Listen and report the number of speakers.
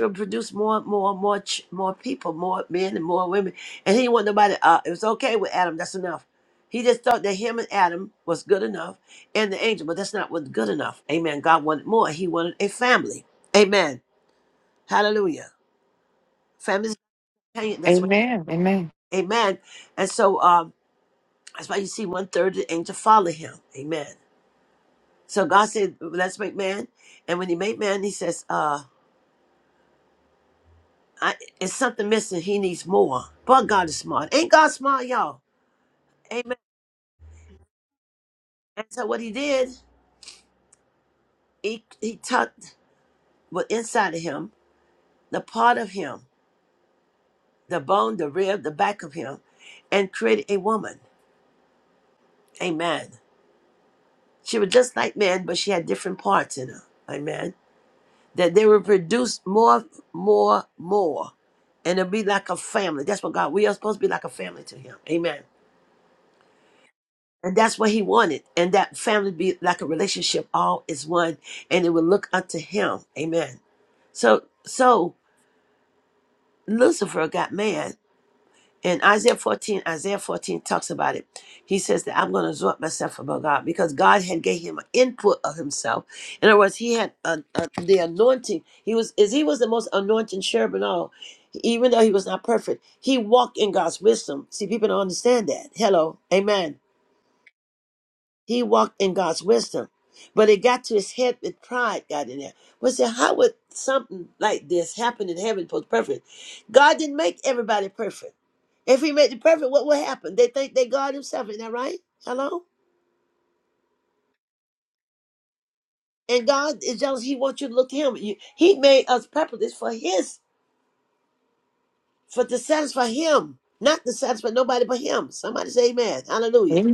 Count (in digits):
2